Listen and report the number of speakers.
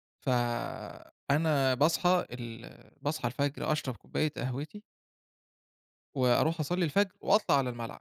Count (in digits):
1